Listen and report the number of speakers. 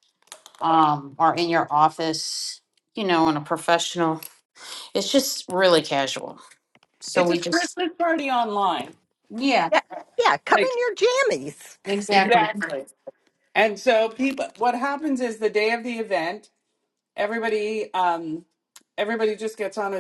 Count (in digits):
3